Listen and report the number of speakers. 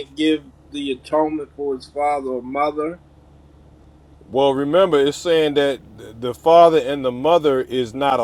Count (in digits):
2